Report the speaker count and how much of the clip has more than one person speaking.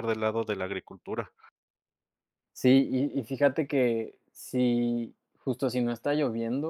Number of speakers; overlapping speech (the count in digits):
2, no overlap